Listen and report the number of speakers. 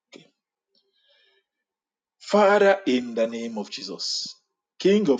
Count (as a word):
one